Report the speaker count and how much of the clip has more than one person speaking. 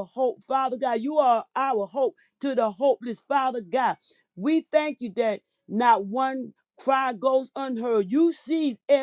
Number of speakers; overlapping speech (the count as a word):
one, no overlap